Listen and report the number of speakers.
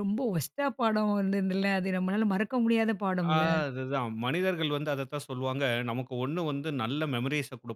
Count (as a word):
two